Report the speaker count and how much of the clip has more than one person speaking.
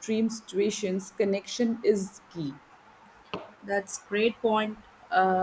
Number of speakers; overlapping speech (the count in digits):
2, no overlap